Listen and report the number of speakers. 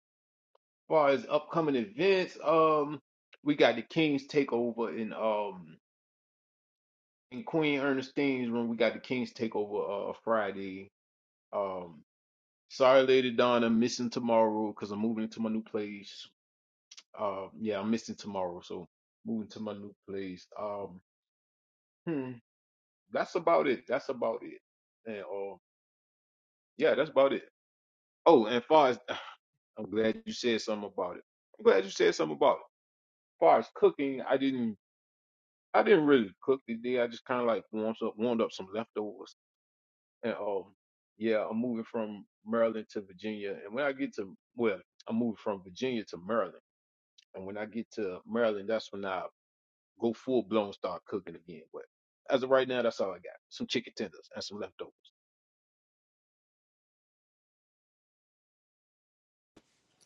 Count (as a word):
one